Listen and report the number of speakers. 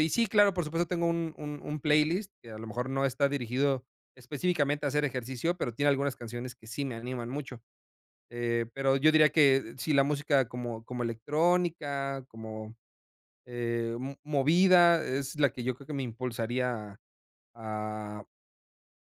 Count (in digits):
1